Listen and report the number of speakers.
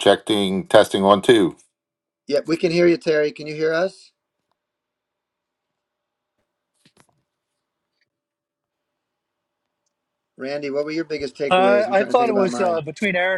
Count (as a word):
three